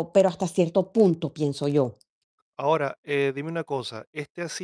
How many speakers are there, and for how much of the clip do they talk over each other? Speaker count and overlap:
2, no overlap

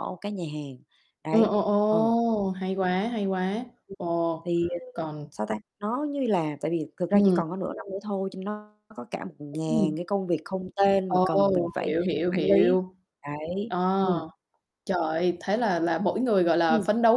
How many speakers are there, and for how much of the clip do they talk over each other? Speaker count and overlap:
2, about 16%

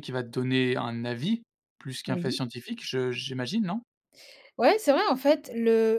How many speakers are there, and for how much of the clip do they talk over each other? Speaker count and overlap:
2, about 5%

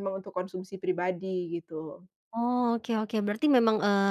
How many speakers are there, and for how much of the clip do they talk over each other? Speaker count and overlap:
2, no overlap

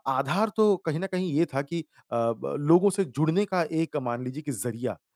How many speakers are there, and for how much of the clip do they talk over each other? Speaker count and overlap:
1, no overlap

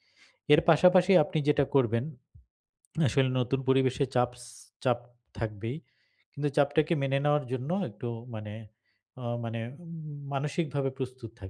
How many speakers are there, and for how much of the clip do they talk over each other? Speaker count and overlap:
1, no overlap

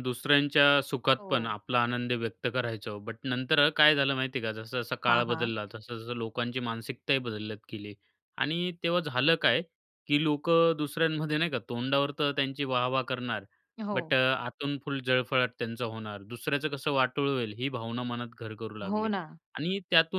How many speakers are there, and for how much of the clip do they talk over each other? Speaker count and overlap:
2, about 6%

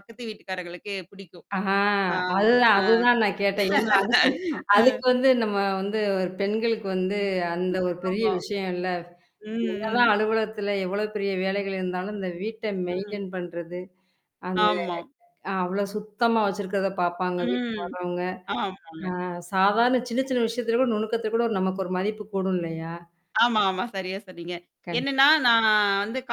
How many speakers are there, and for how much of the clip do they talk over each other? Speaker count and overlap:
2, about 8%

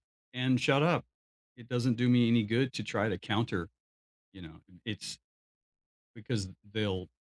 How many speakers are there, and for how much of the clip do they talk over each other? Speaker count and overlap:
1, no overlap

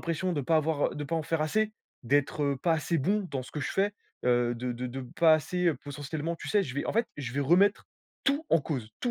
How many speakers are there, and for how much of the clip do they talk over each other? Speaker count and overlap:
1, no overlap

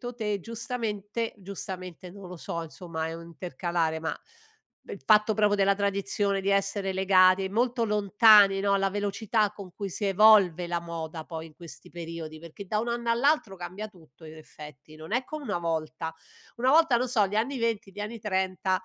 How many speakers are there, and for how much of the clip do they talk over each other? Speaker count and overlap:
1, no overlap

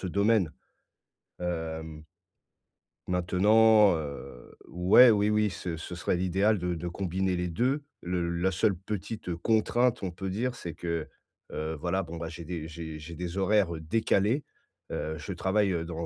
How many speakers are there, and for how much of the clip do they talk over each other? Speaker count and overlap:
1, no overlap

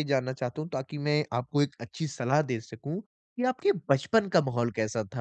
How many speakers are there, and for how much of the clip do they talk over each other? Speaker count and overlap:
1, no overlap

